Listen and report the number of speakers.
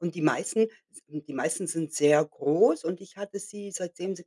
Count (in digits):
1